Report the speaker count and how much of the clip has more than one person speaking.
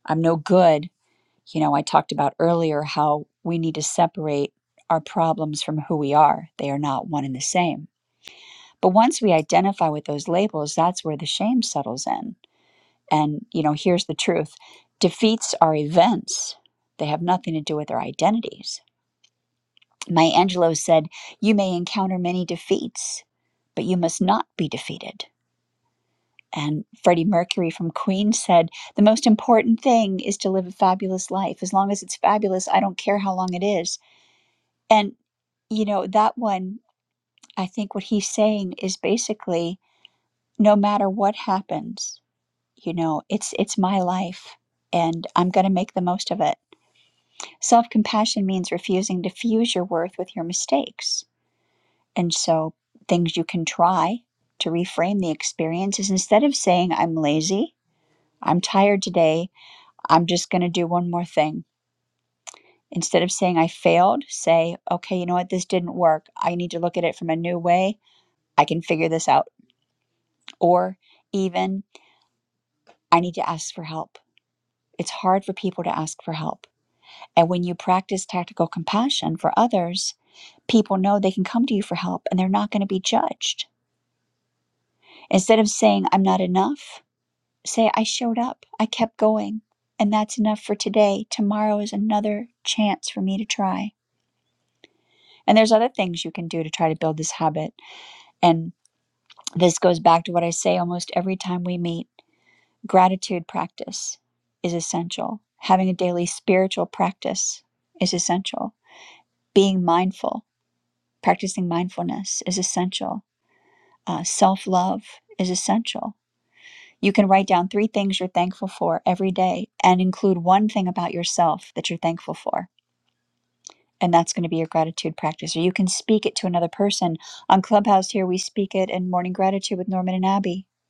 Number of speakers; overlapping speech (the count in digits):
1, no overlap